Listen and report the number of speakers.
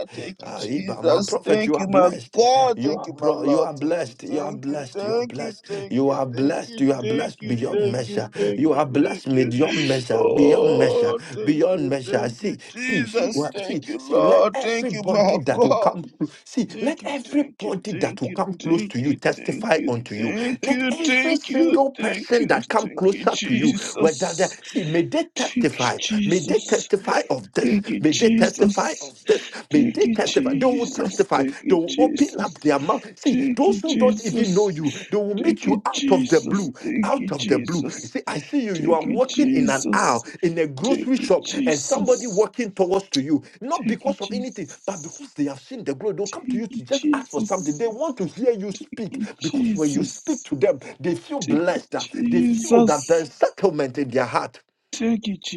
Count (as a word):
two